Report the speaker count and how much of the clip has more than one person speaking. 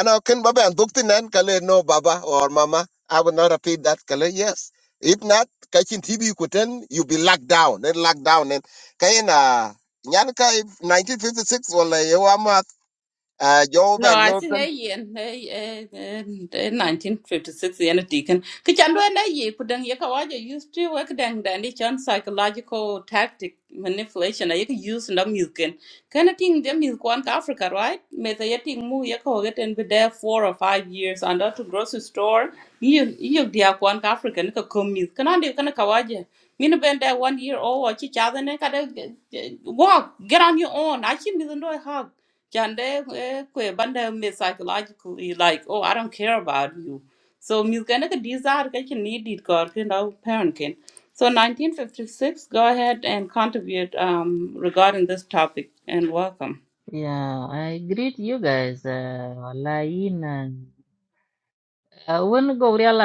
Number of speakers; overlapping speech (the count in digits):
3, about 1%